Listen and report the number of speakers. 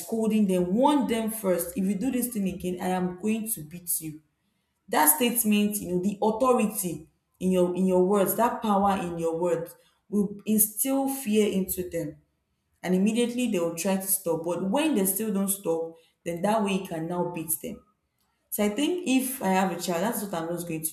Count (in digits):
1